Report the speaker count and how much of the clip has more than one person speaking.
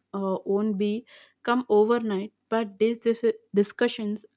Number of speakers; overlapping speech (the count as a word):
one, no overlap